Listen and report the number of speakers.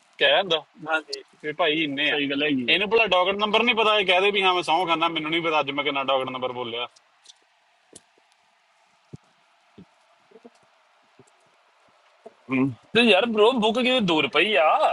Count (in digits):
3